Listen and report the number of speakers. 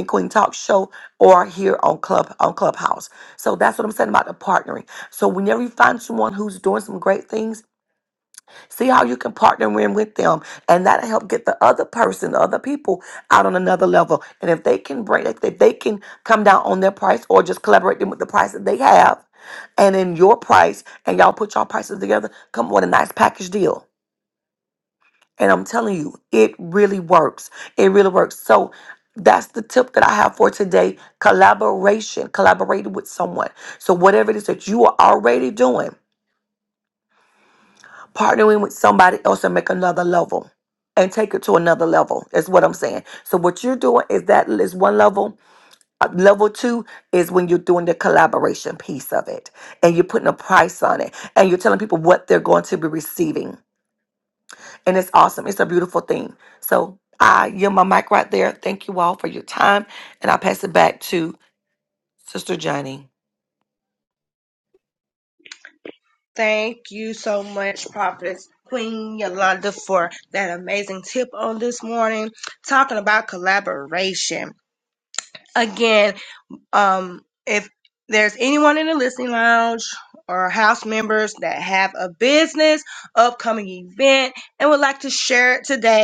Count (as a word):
two